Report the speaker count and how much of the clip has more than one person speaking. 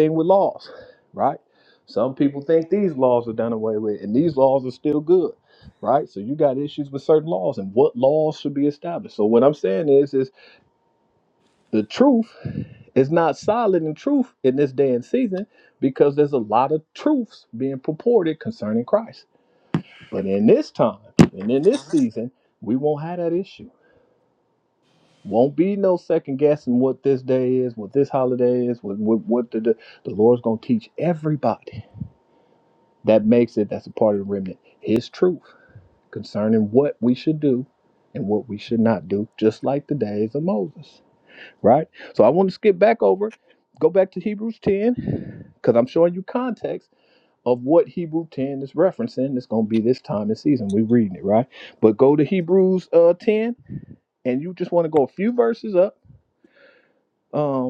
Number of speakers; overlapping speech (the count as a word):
one, no overlap